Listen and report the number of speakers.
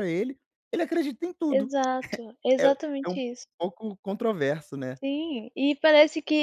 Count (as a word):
two